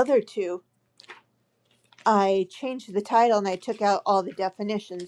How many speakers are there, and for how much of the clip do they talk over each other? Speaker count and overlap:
1, no overlap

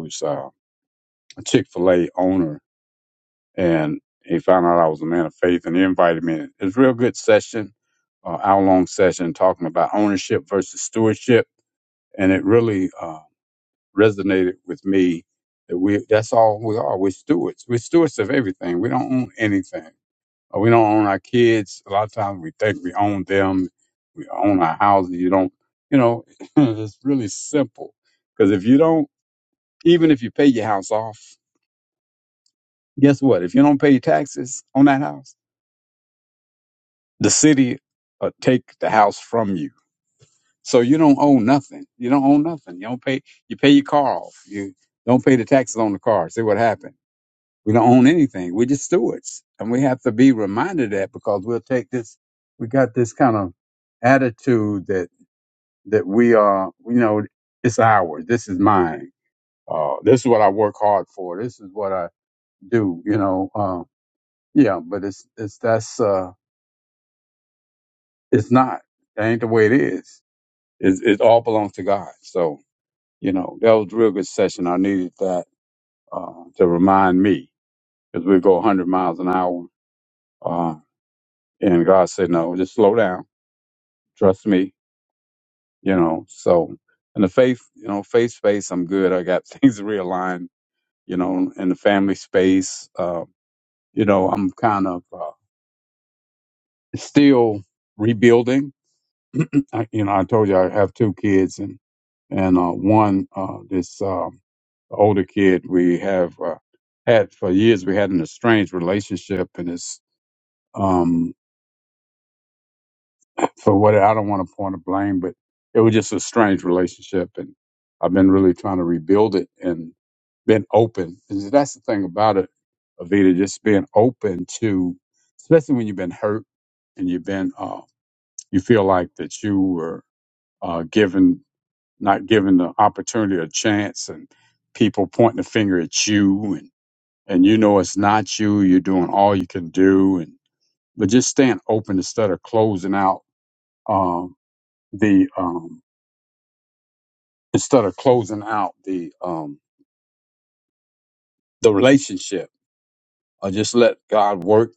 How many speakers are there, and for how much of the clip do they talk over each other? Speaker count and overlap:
1, no overlap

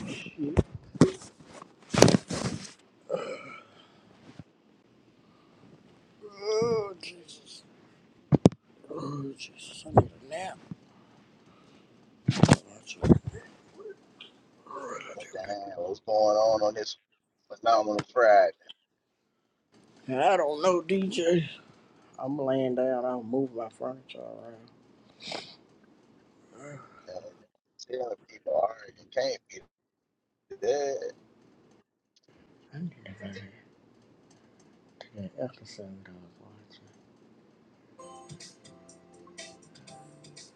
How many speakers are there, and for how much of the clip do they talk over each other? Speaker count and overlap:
2, no overlap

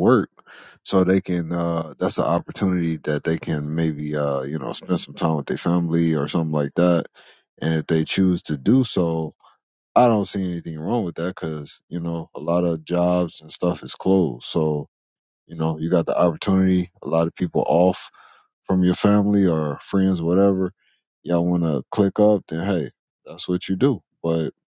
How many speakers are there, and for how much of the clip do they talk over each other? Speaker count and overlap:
1, no overlap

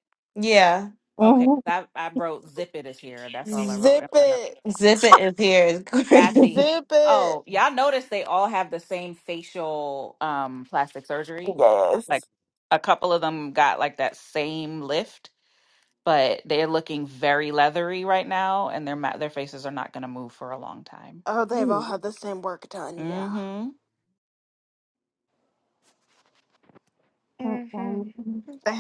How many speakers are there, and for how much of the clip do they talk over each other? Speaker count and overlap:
4, about 11%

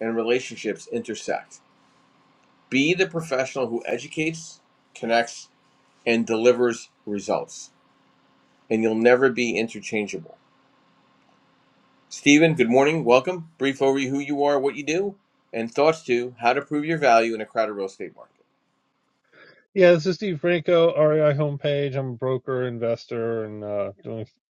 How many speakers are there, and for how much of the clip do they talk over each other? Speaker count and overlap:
2, no overlap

